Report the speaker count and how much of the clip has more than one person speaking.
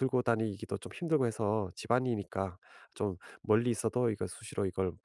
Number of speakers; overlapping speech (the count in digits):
1, no overlap